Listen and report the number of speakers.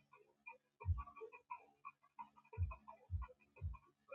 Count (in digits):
0